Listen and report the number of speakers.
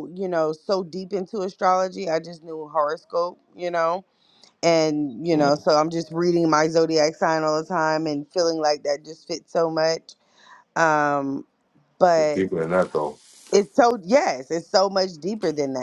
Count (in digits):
2